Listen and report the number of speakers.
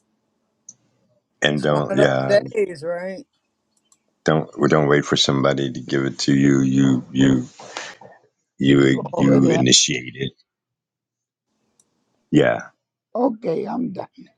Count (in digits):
3